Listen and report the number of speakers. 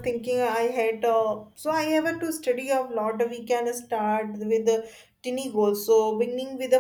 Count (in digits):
1